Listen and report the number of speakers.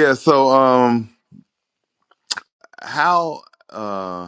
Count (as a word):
one